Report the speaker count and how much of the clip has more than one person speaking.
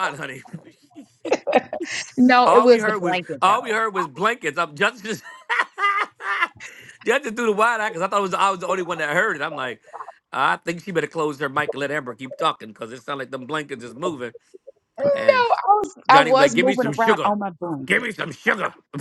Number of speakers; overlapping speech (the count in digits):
2, about 16%